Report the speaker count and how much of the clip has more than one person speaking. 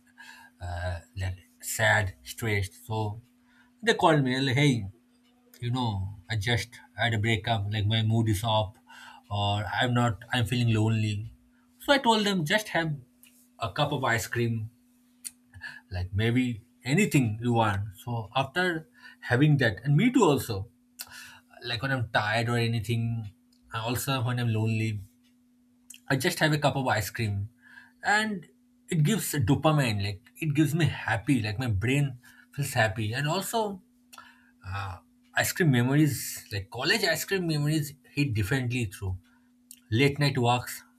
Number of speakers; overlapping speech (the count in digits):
1, no overlap